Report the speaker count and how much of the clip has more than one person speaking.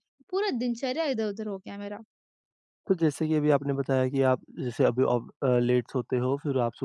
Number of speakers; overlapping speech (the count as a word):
two, no overlap